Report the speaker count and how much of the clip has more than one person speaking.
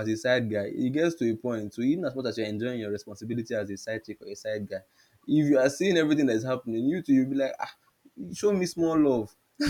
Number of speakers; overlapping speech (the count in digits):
1, no overlap